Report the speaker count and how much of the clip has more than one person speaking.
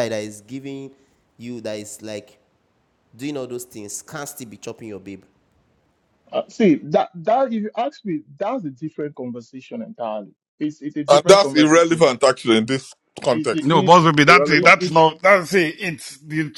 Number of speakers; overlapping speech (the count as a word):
four, about 14%